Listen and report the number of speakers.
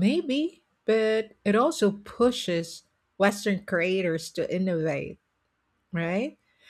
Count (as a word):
one